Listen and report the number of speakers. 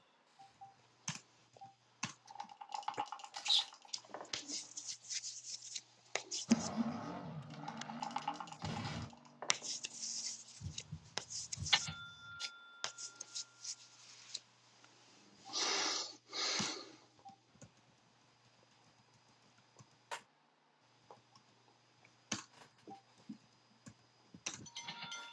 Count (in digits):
0